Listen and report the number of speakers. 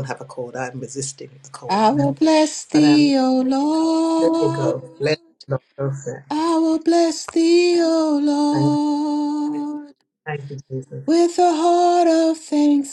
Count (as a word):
two